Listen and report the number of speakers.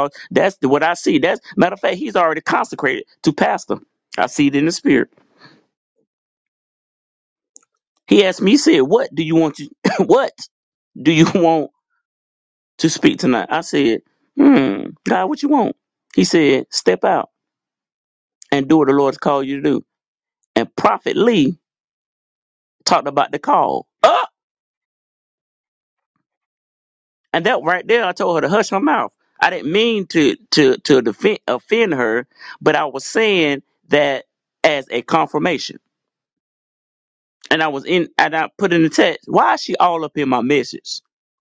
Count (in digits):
1